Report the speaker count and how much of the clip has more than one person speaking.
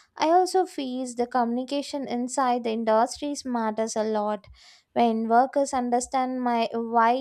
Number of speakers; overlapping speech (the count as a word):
one, no overlap